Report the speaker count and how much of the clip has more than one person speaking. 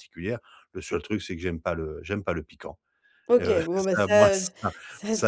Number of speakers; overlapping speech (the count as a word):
two, about 23%